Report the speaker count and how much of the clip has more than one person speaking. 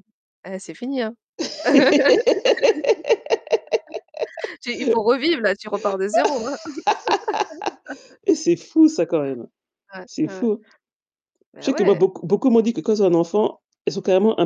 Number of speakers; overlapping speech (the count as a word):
two, about 5%